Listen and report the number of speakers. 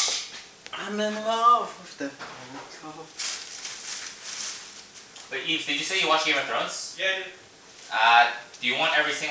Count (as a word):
three